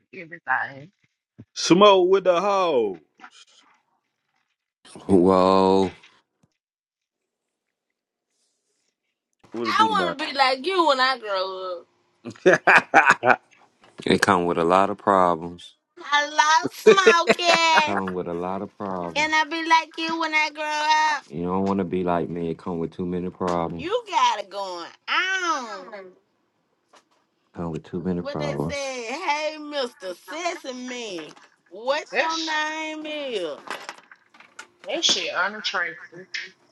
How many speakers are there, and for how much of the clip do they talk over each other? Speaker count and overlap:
four, about 5%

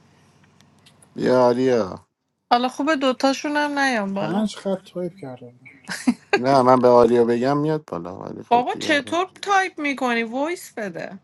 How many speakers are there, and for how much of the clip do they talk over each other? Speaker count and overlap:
three, about 8%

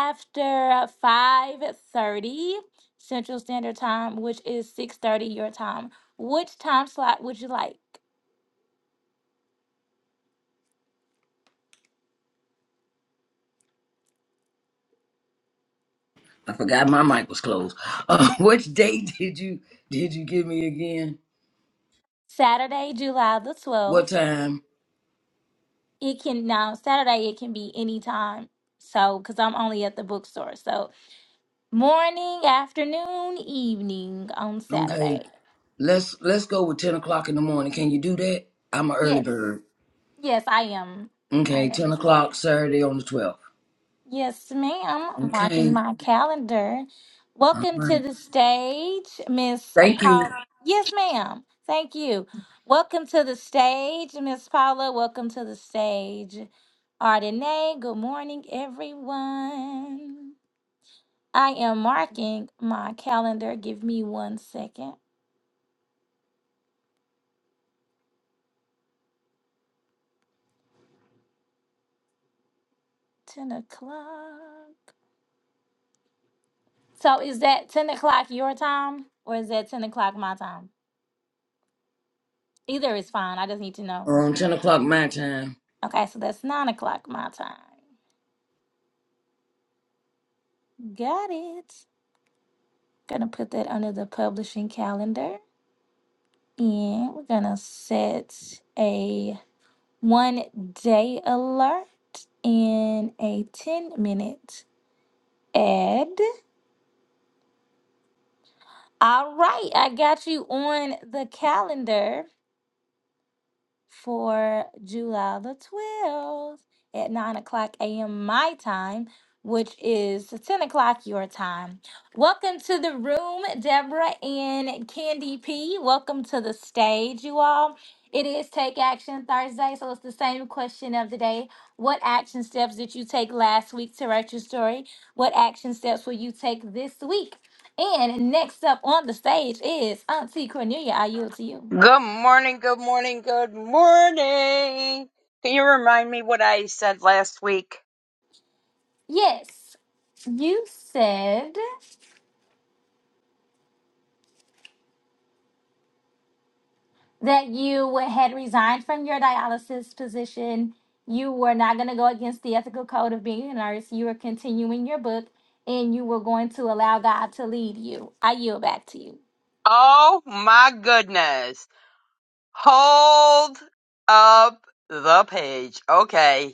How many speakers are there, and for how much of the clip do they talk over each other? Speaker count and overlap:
three, about 2%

